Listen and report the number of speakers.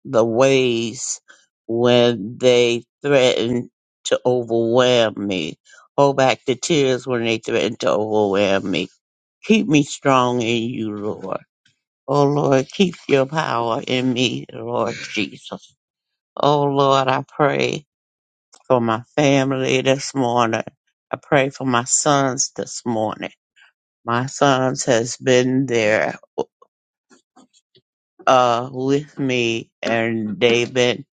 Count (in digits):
1